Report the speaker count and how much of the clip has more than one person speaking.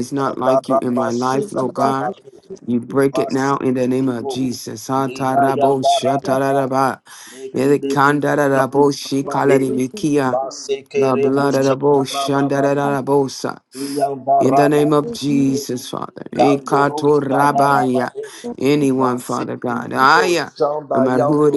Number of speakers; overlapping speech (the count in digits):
2, about 34%